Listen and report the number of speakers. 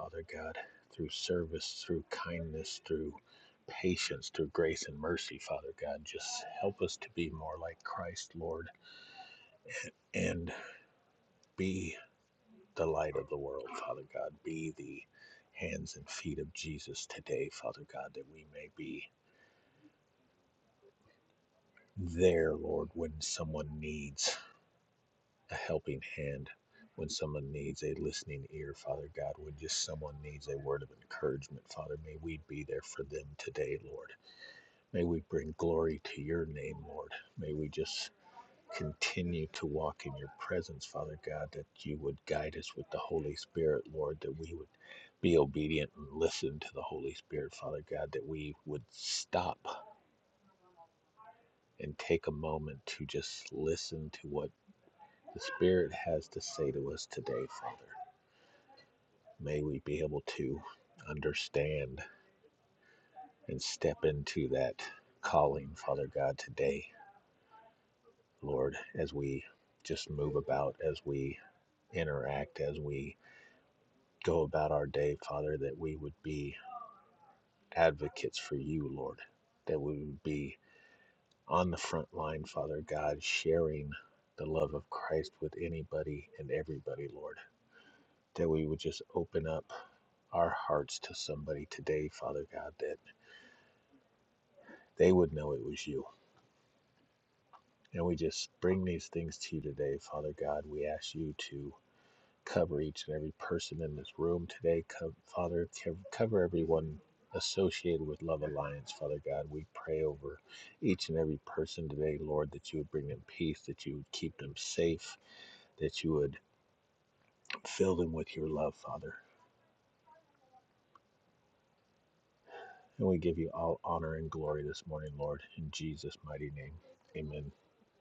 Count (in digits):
1